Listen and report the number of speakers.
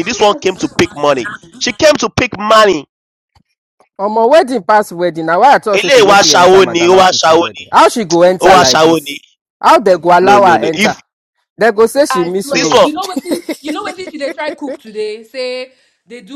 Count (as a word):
three